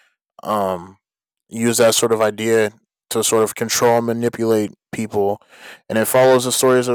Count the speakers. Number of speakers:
one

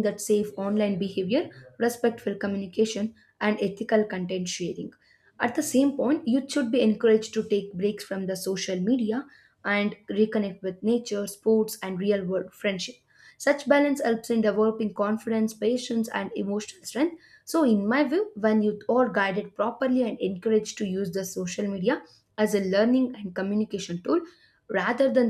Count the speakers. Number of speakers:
one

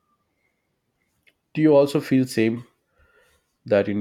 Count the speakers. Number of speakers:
one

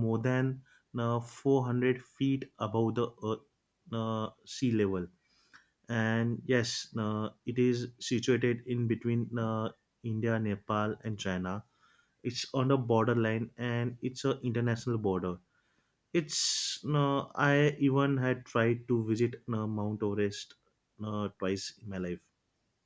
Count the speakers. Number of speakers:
one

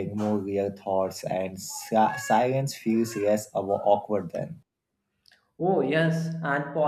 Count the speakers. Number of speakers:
two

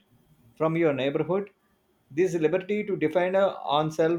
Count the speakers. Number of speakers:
one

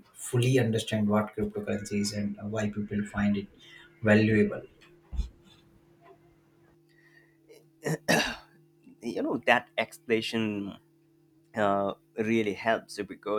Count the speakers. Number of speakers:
two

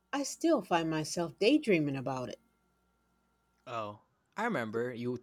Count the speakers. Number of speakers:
two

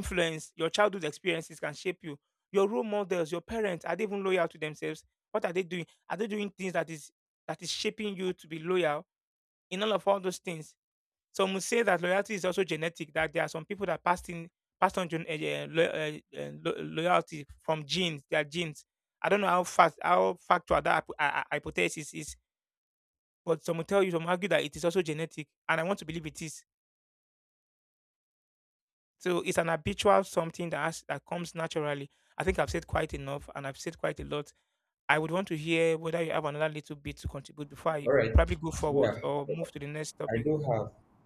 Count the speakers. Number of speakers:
two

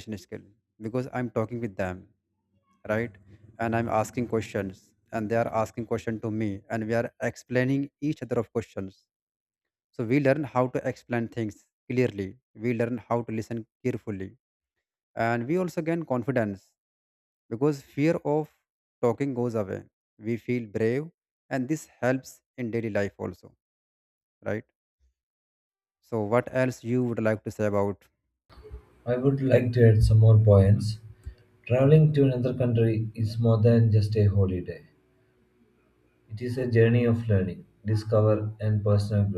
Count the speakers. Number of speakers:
two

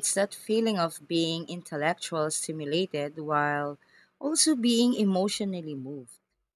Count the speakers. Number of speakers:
one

